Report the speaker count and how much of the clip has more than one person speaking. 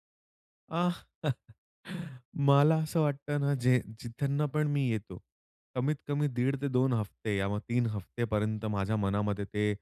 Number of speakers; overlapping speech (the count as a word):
one, no overlap